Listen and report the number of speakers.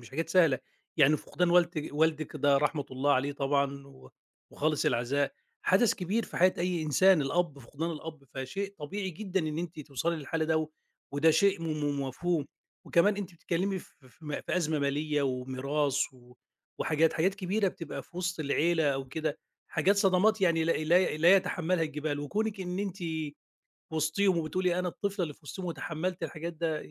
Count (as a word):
one